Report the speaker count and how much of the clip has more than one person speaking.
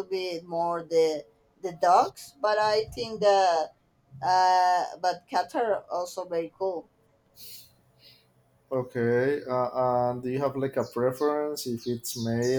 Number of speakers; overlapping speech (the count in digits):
2, no overlap